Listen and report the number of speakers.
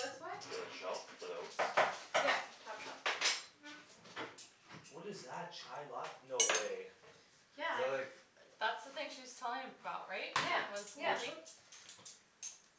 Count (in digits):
4